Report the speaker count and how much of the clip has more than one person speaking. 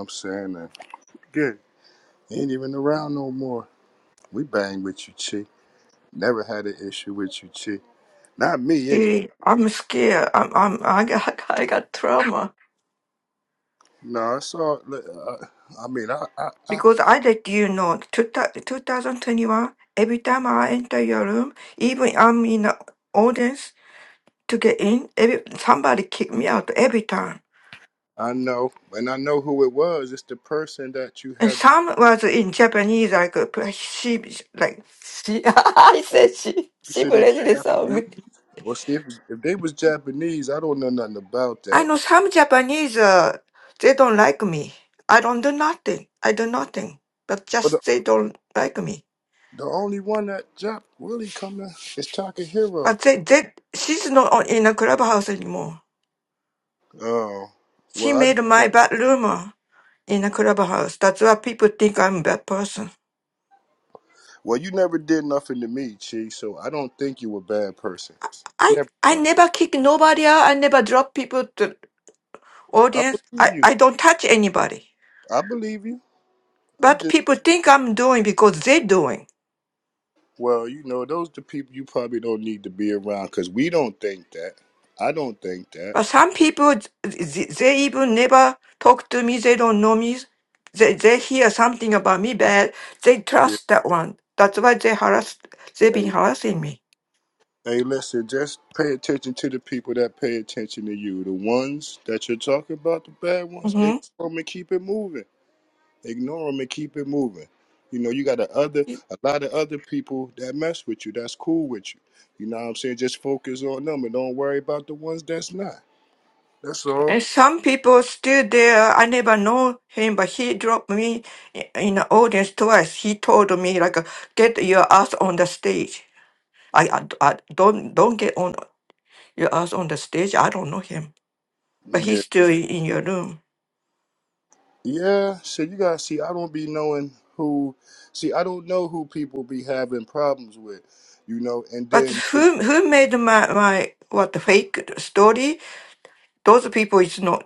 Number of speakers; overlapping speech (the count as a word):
two, about 4%